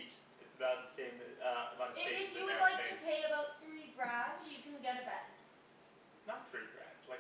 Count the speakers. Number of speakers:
2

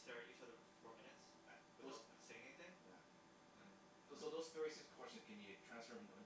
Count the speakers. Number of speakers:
2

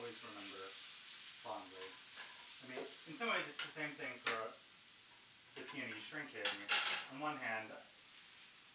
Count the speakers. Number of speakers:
1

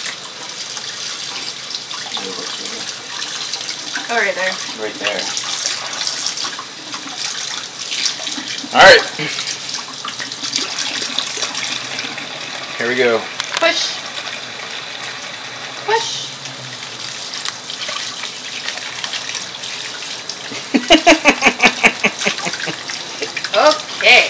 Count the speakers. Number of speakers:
2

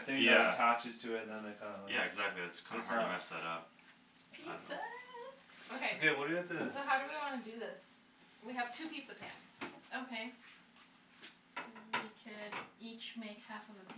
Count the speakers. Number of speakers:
4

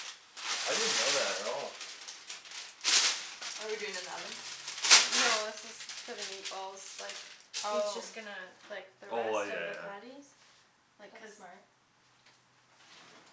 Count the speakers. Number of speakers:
3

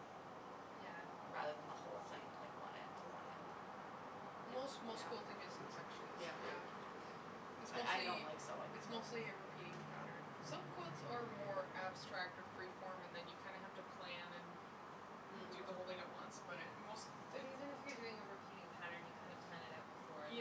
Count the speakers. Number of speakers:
3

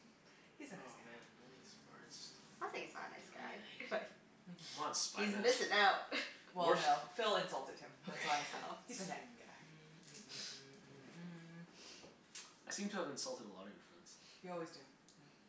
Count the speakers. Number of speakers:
4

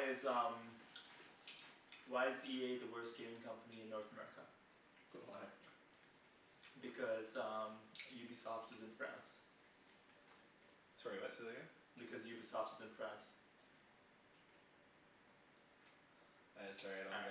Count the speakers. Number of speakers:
2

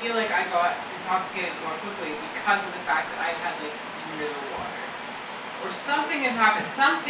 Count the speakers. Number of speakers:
1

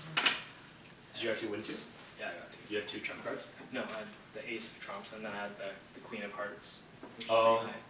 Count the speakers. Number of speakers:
2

